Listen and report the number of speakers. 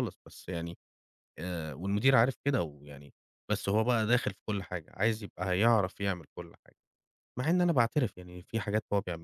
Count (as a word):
one